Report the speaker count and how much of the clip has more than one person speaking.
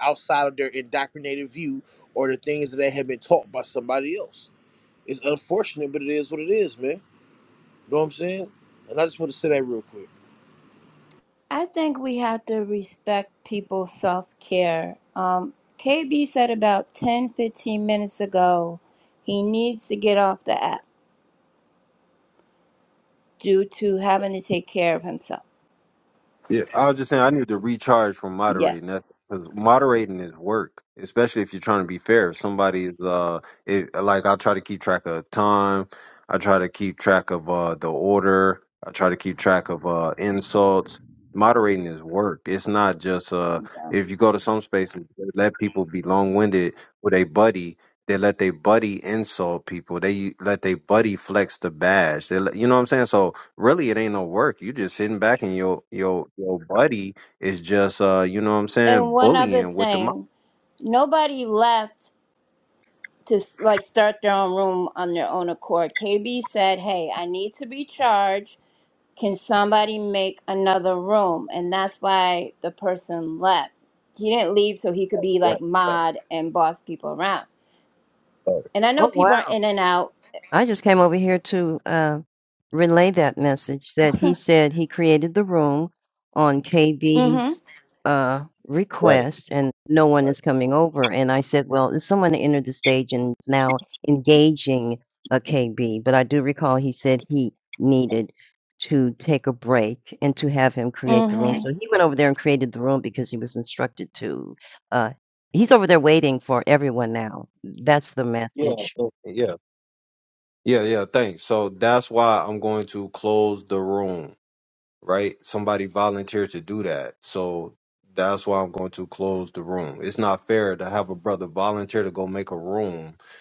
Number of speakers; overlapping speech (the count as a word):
four, about 3%